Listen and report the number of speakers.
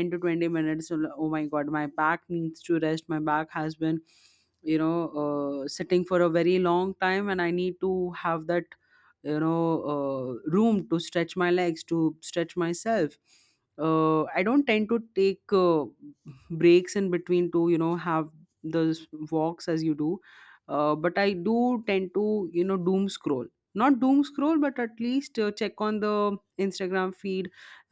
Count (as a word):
one